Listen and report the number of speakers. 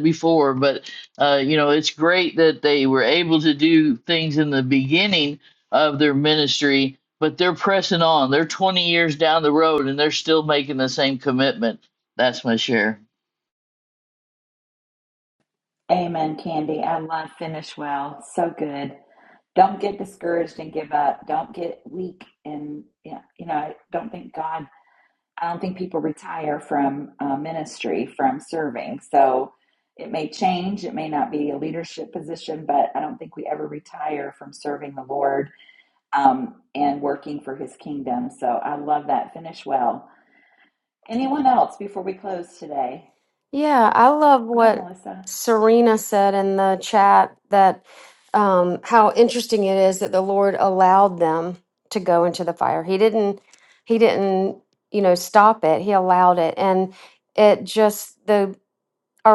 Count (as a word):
three